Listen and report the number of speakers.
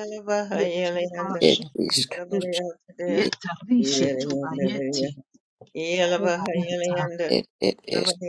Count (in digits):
3